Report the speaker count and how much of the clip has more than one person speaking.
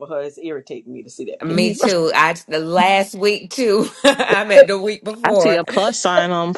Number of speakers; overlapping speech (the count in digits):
3, about 10%